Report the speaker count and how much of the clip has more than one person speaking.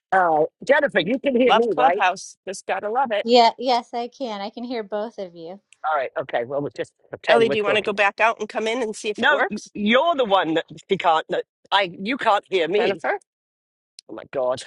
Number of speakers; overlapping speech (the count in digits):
3, about 13%